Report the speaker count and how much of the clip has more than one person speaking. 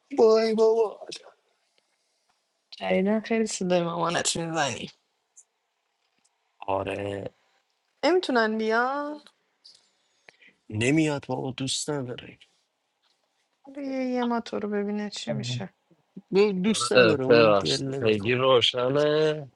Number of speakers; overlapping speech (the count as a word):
three, about 9%